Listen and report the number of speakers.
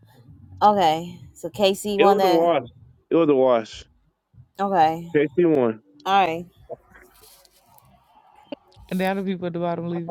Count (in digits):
3